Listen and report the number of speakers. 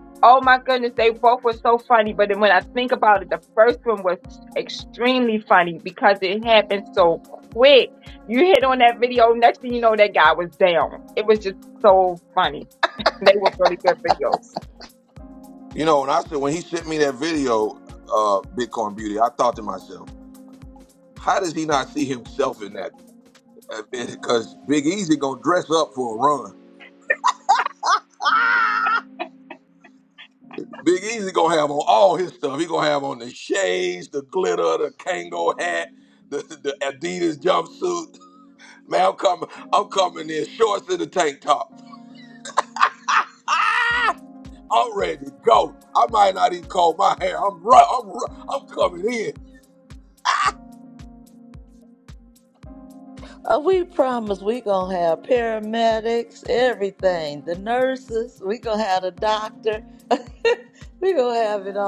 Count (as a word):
three